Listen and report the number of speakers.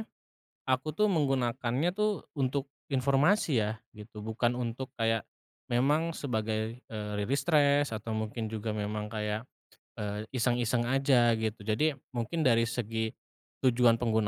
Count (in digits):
1